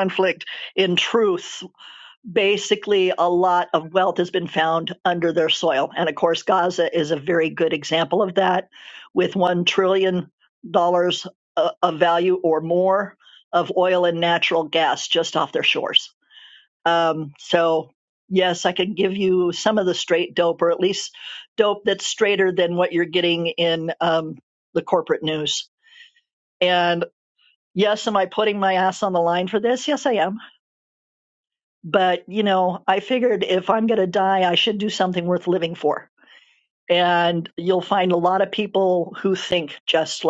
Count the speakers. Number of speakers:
1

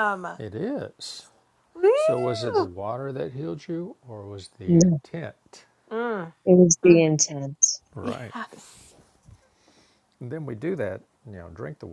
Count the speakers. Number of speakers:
3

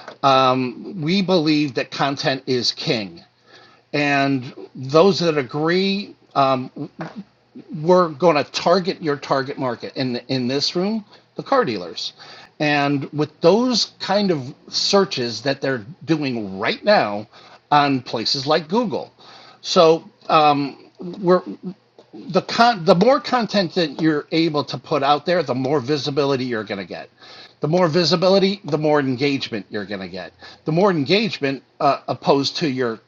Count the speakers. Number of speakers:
1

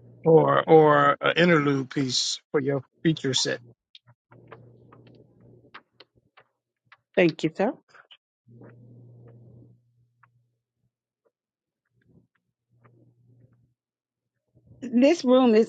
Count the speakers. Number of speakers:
2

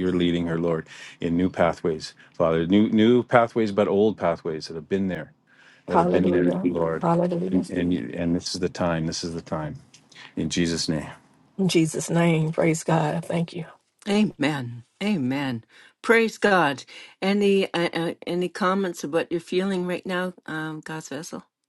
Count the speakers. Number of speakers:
3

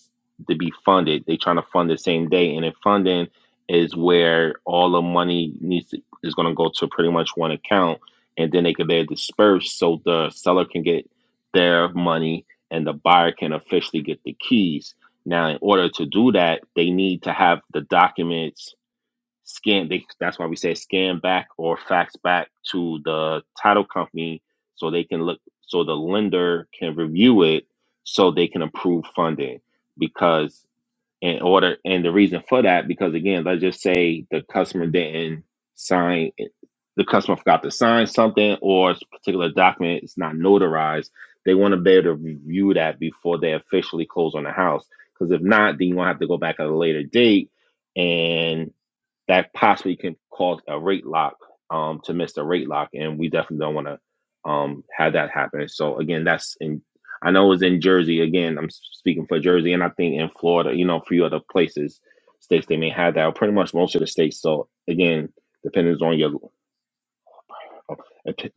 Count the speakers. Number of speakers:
1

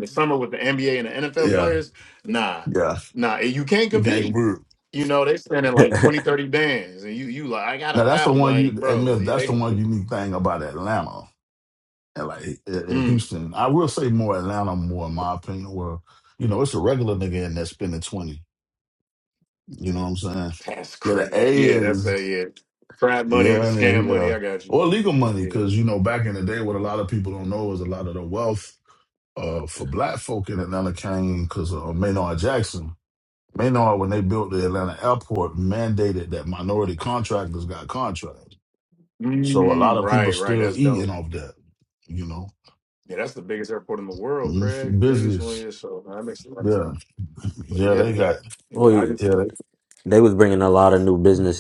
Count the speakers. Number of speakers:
3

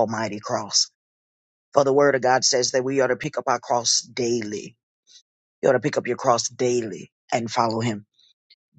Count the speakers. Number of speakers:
1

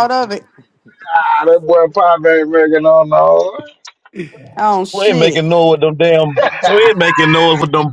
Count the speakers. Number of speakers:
3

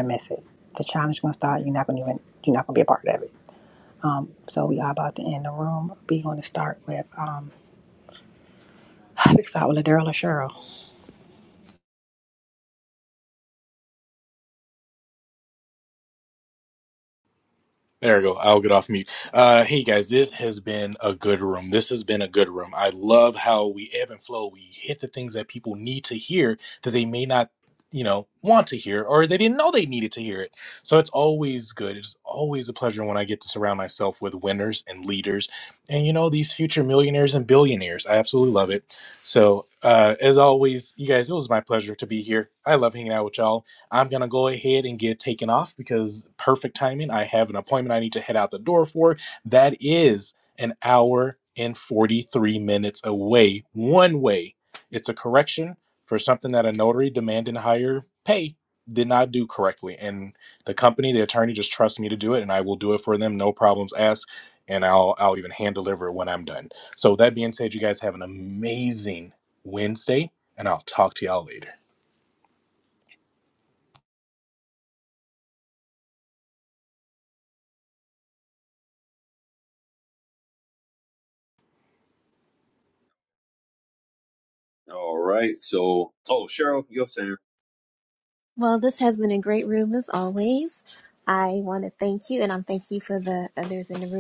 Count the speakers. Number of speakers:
4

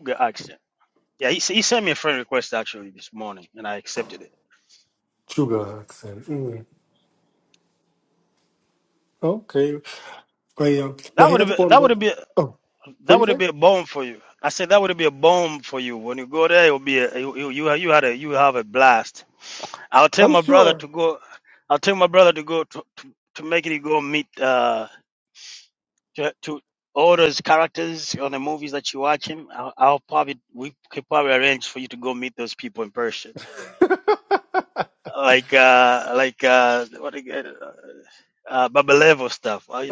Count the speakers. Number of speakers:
2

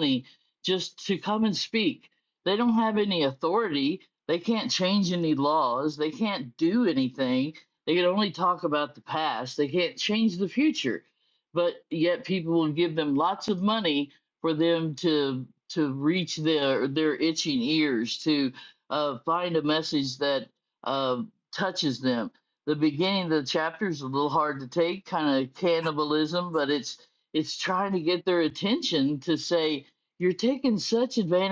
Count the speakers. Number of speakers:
1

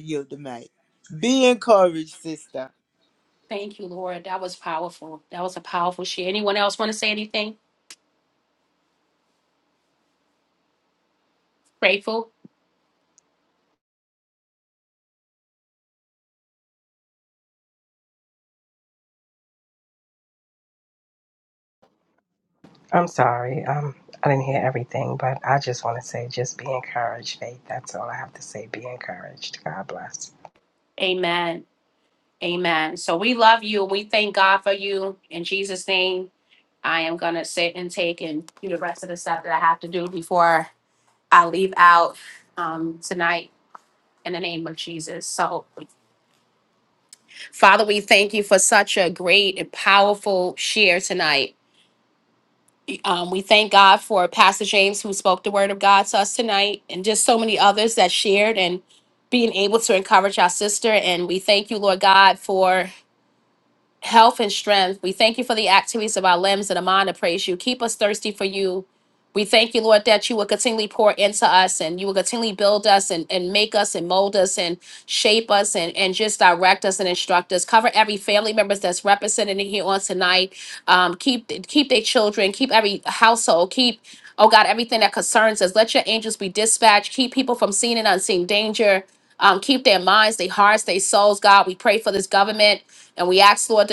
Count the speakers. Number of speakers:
3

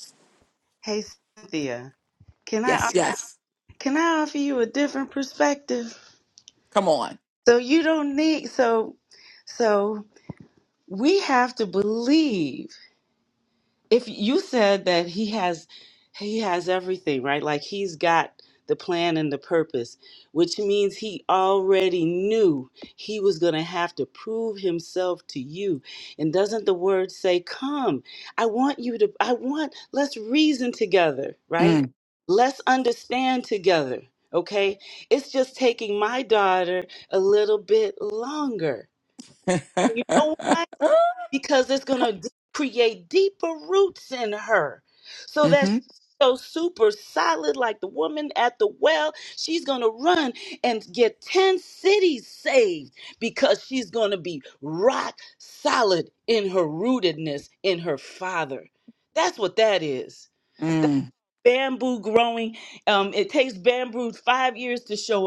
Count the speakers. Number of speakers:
2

